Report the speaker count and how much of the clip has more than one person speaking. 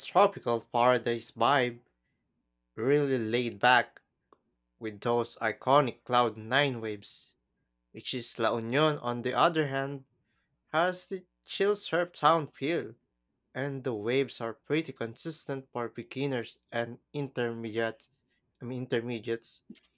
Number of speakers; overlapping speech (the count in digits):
1, no overlap